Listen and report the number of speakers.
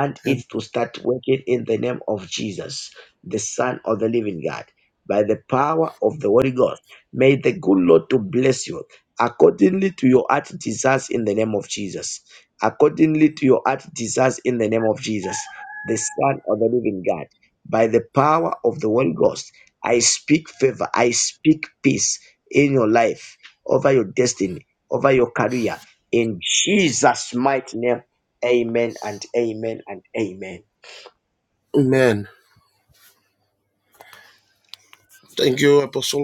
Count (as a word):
two